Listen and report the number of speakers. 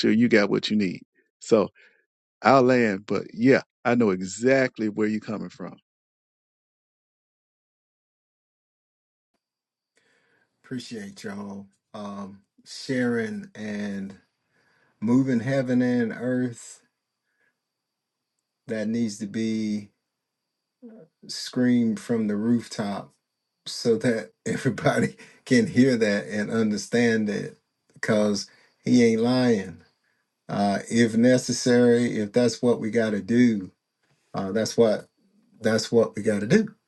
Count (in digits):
2